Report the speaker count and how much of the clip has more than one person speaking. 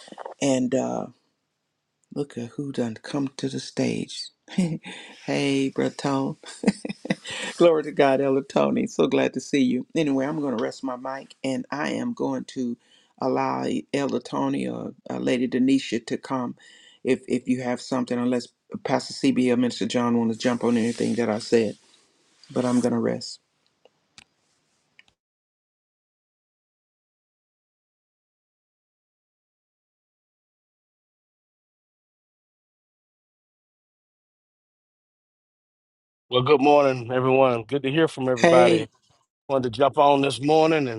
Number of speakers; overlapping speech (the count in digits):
2, about 1%